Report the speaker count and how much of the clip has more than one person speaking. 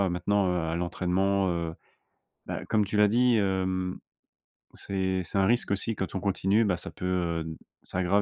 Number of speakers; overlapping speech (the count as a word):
one, no overlap